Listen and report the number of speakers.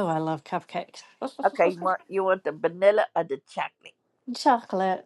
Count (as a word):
two